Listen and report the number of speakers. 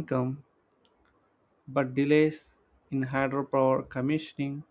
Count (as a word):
one